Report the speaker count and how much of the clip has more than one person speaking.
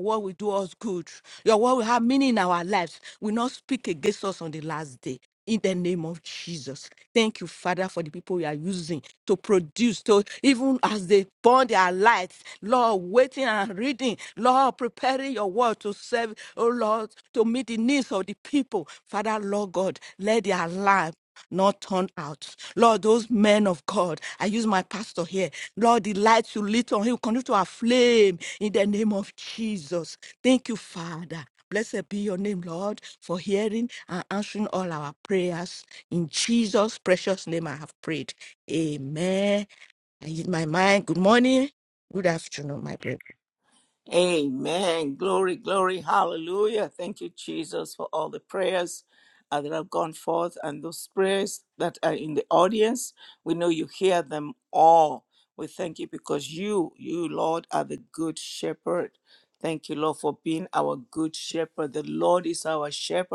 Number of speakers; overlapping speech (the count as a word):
two, no overlap